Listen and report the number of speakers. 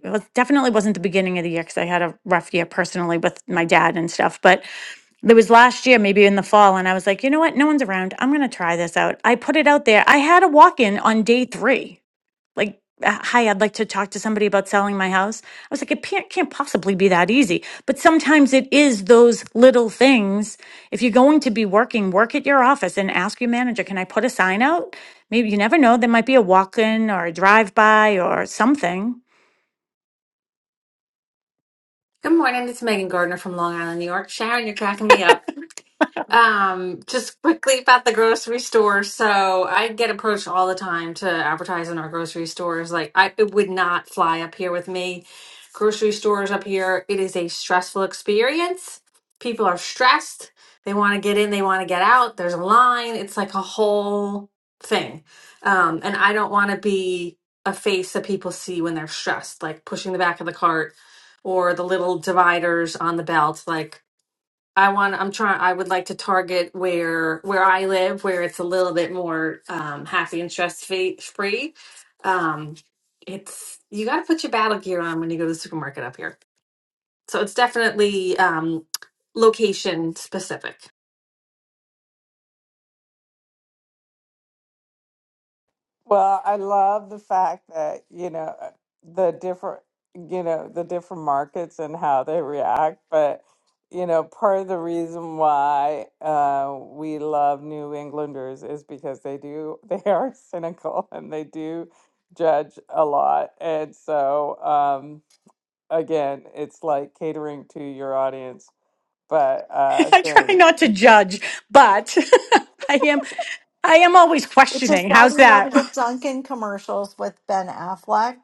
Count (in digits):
4